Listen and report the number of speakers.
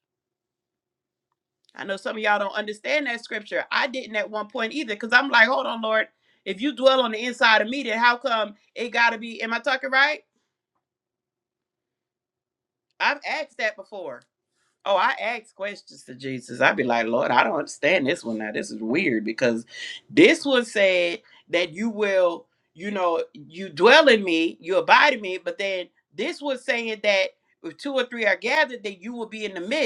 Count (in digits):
1